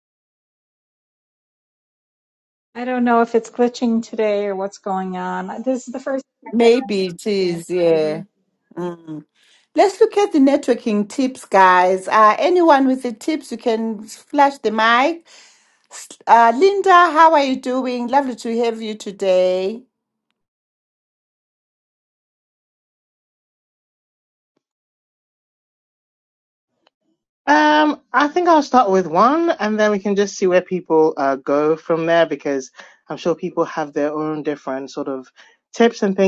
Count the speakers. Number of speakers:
3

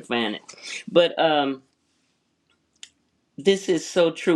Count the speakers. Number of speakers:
1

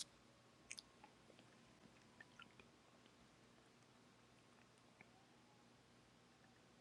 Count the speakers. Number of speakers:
0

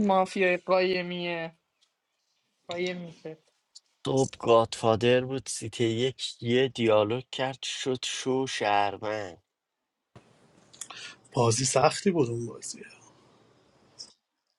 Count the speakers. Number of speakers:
3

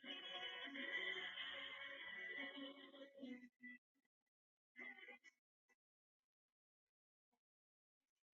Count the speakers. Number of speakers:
0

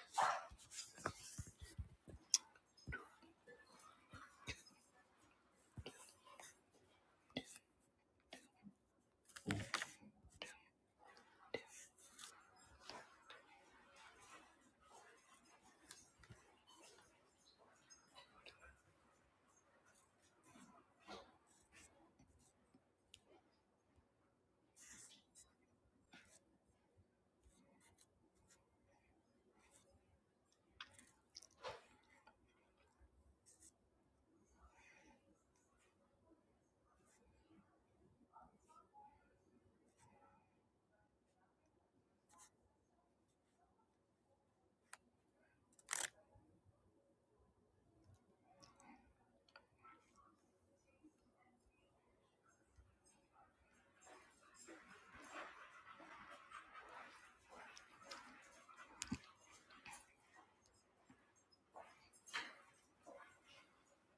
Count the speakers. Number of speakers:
0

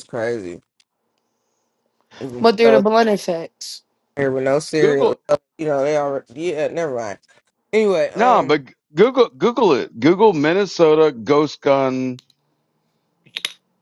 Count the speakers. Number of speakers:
3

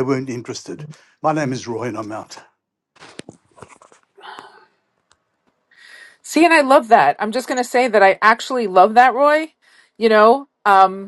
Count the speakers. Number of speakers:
2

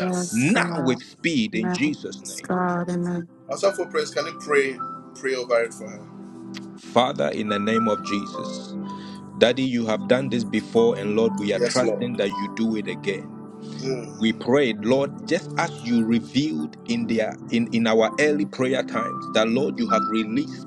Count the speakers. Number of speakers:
3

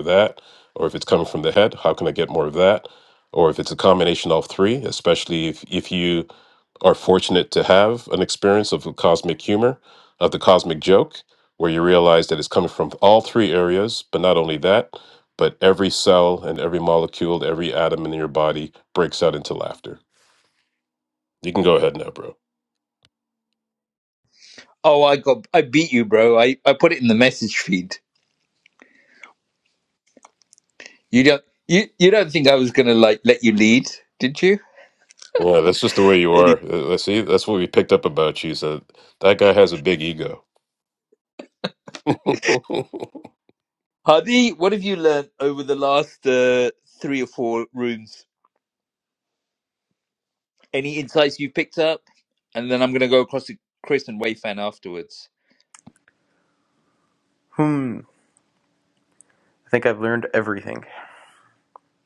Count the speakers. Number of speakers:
3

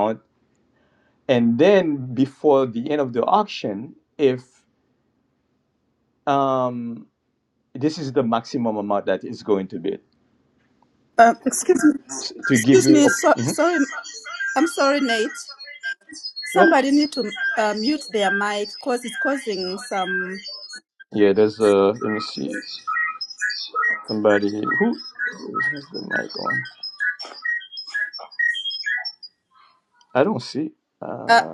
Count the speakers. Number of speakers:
2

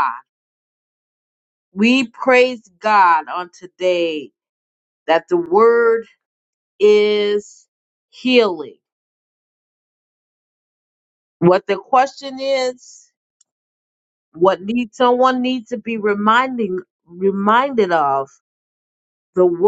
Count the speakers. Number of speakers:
1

